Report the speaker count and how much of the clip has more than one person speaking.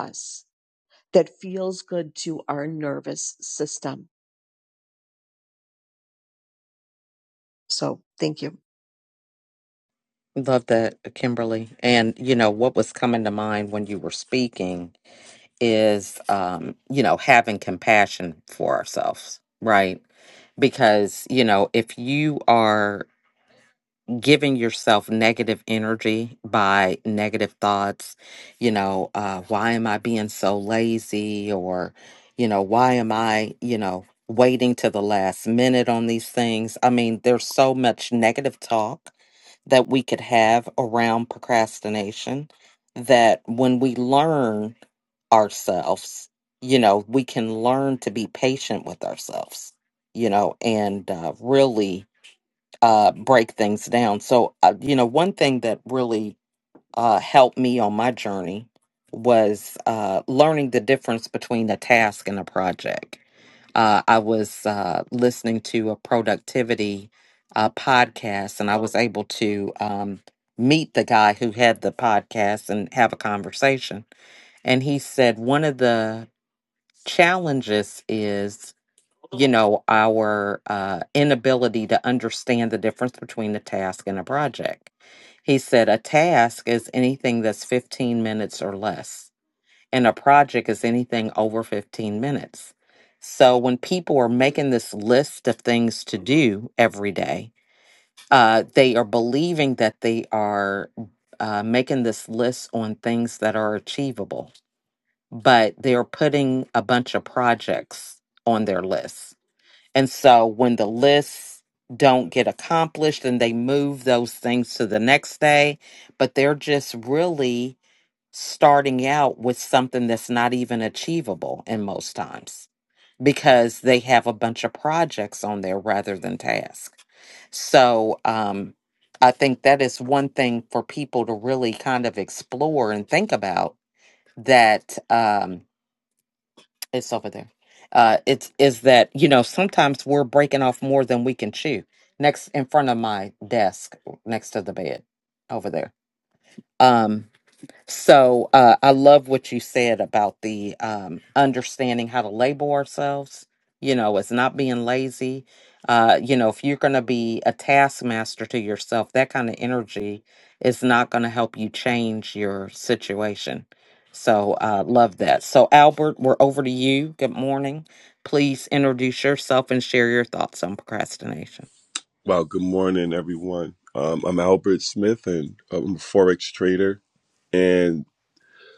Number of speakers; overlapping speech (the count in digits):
3, no overlap